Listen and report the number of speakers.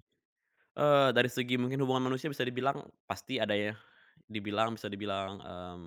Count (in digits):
1